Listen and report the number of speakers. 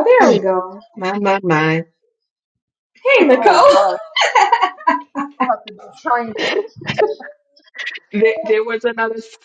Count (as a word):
three